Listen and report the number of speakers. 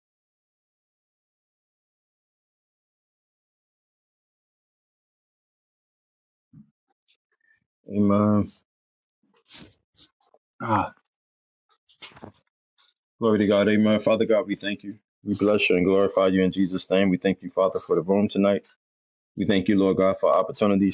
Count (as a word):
one